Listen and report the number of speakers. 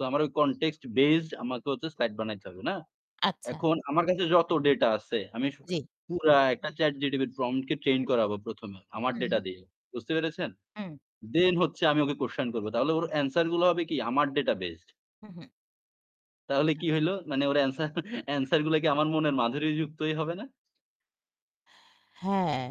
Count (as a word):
two